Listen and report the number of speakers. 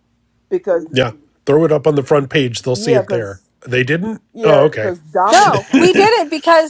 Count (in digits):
3